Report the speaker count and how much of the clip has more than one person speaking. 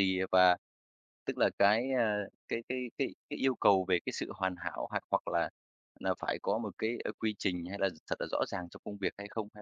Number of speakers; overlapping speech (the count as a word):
one, no overlap